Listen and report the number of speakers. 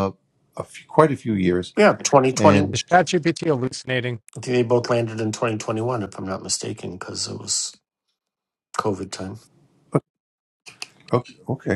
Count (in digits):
3